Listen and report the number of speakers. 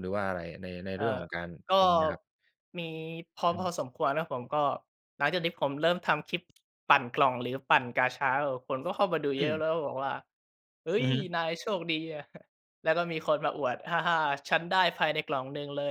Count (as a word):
two